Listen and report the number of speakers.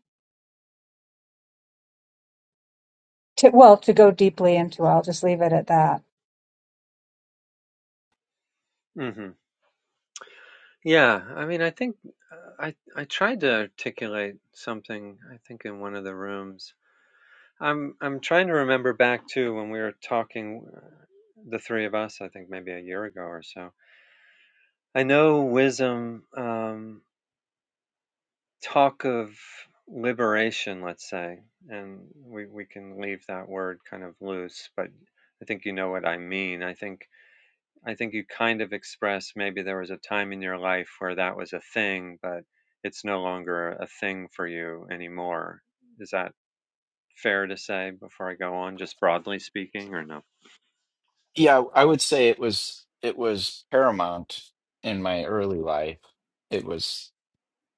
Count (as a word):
three